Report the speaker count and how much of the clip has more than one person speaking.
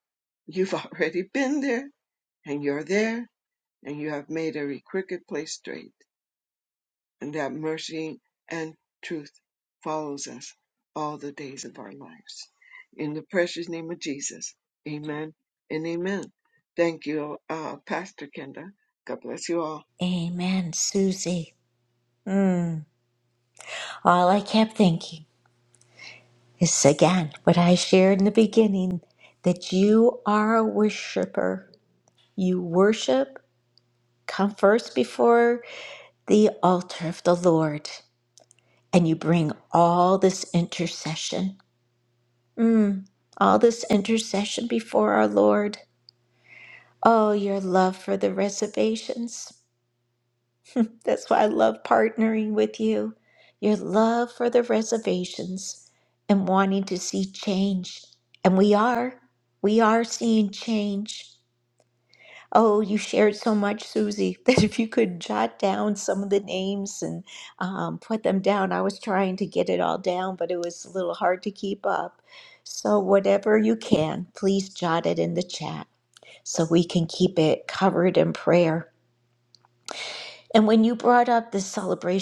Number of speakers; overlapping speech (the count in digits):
2, no overlap